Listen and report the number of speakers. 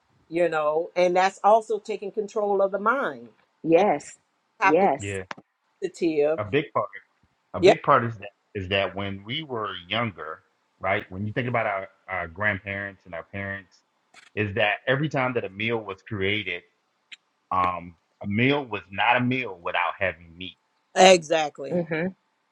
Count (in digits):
3